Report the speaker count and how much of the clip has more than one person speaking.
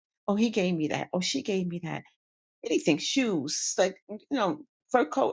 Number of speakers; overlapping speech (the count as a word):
one, no overlap